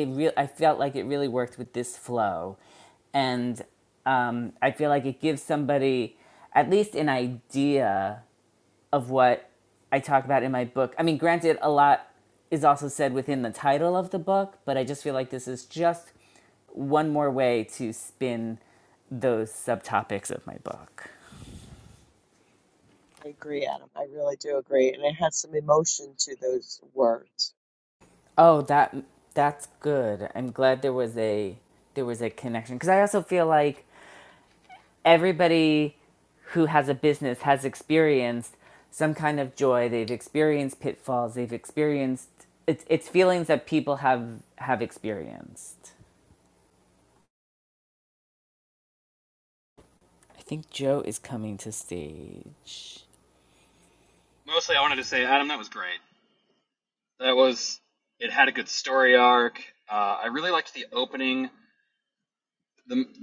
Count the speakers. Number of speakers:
3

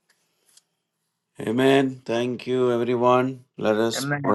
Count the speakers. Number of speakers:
1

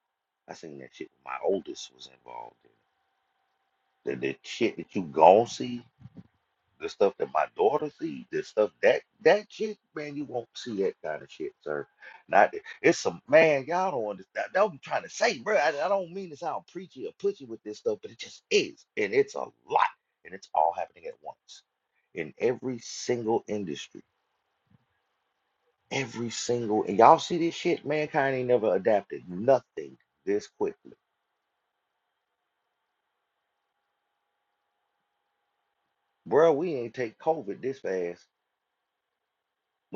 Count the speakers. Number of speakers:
1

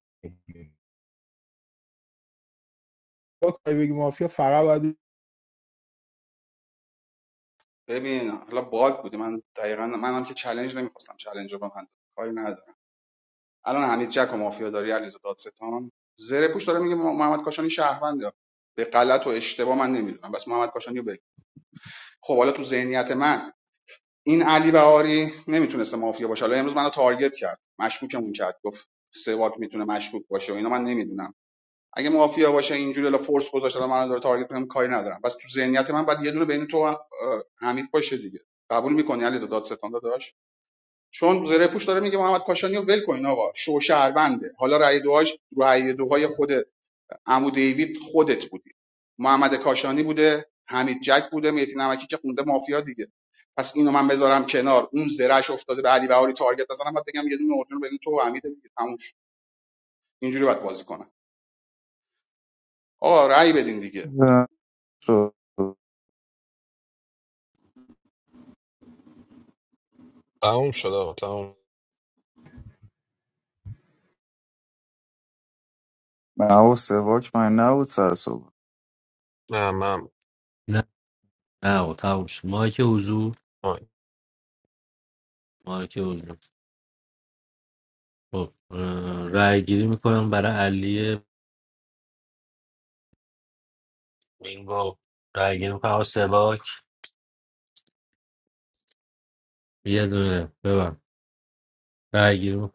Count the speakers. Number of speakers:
5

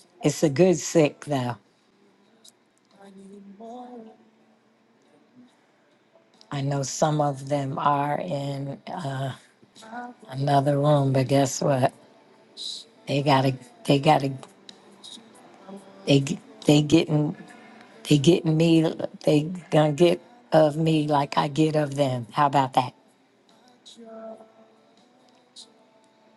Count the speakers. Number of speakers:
1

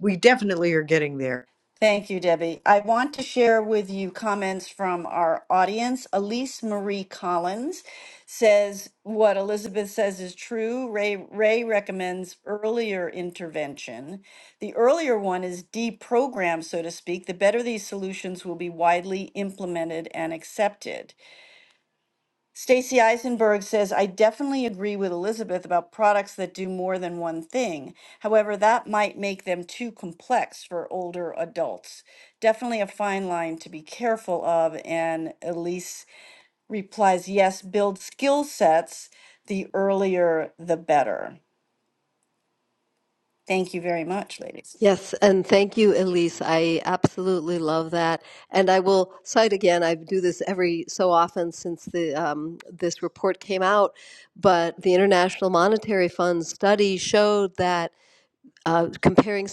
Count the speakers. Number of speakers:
3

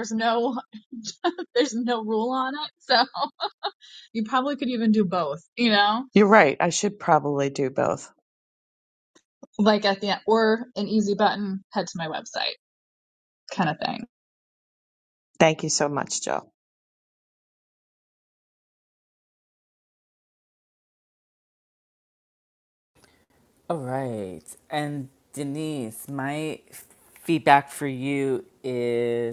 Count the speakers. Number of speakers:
3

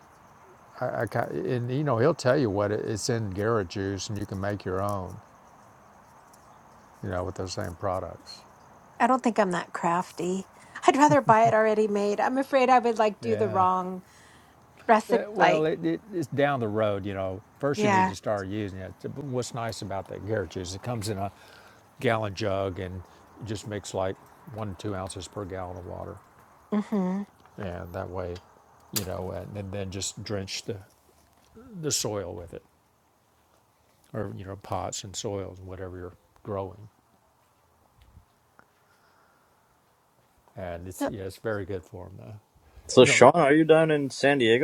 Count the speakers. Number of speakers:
3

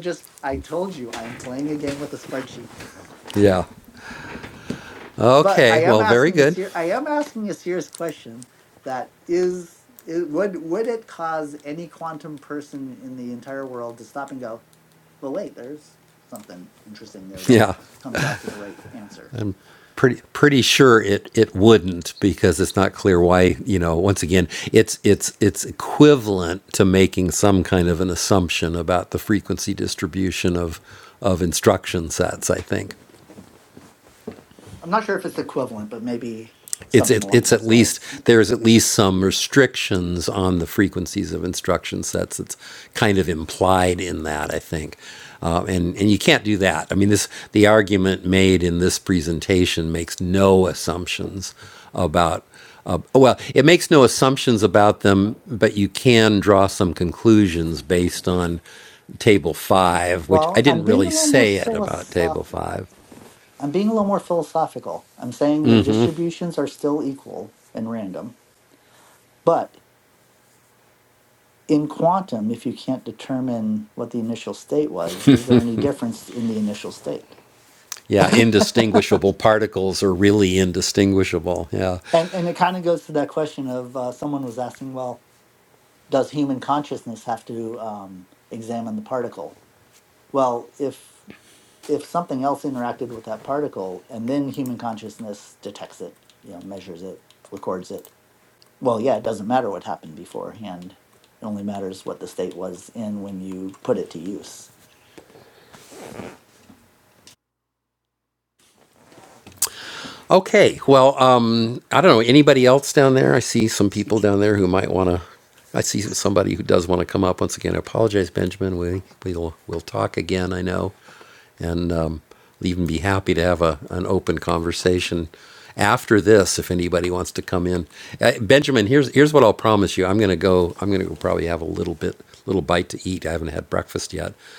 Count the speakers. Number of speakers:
2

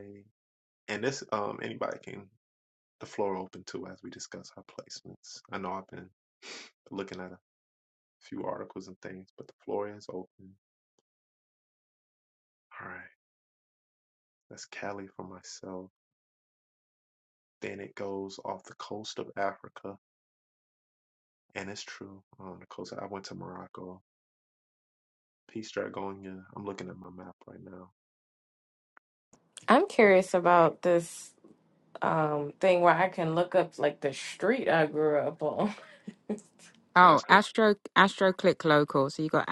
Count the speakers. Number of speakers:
3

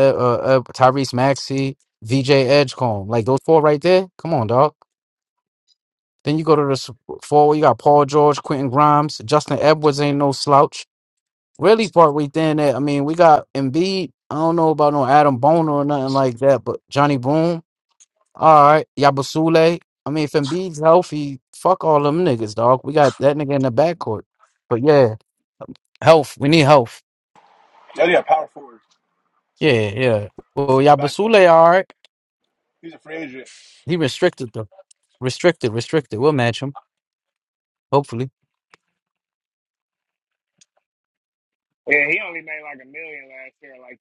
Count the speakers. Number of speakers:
3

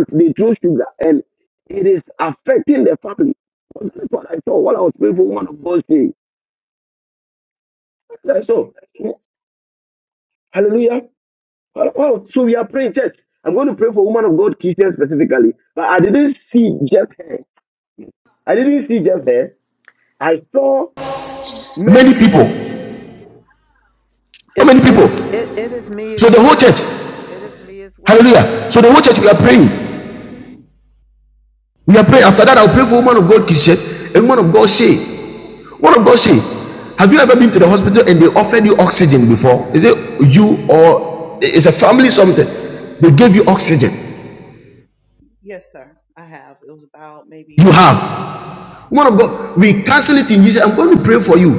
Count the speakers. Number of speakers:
4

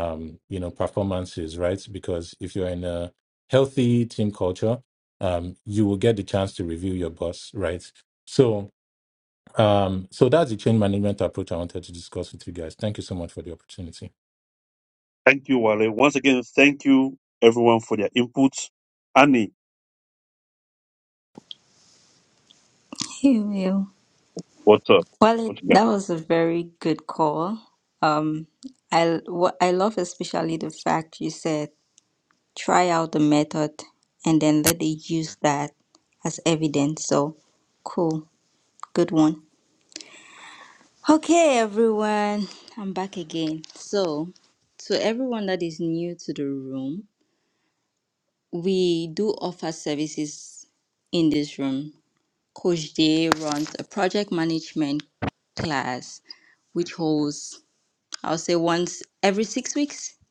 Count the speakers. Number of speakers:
3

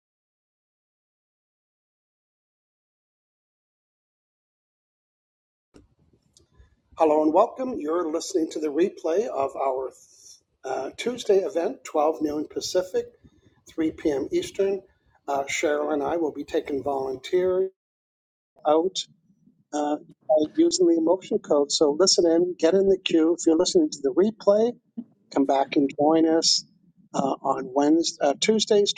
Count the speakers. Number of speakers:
1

